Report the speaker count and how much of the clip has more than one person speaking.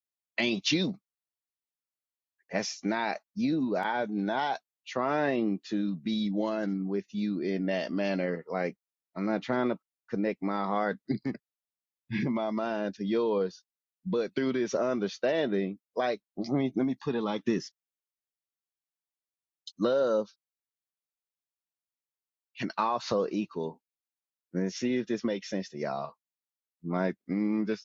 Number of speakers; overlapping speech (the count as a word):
one, no overlap